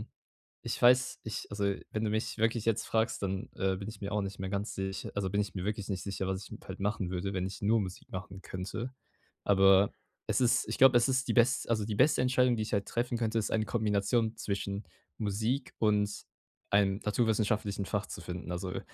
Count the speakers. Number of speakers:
1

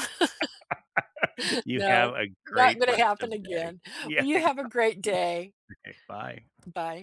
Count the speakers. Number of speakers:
2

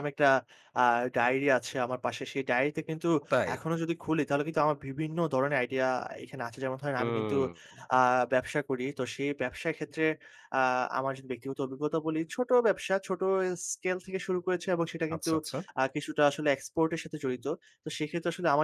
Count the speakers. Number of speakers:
2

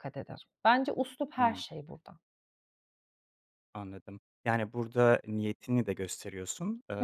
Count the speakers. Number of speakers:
2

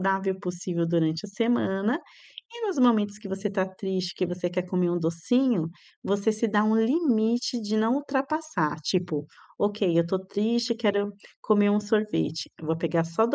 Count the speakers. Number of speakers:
1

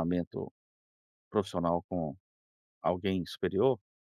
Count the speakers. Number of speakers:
1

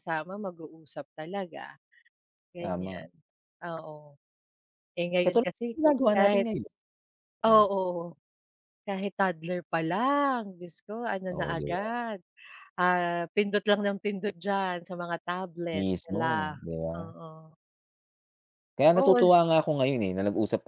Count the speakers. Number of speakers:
2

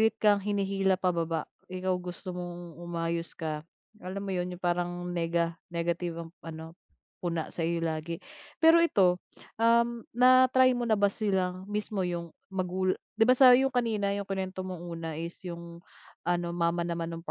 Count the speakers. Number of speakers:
1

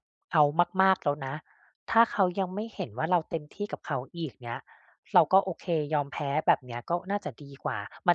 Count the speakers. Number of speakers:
1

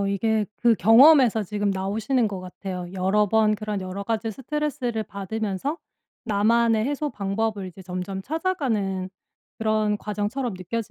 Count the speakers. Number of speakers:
1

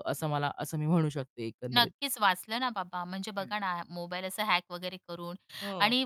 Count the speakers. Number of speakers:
2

